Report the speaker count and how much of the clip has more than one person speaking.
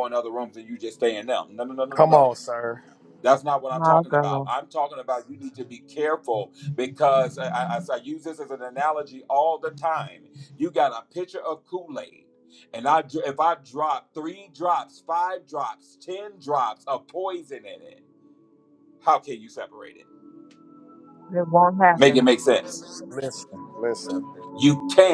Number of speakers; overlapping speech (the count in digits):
3, about 5%